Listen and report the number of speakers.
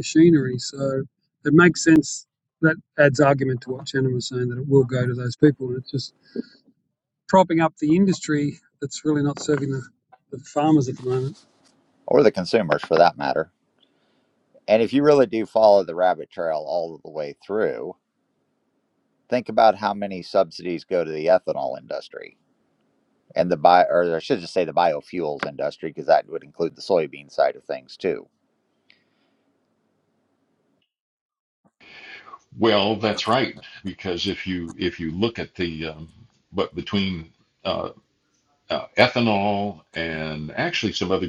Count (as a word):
three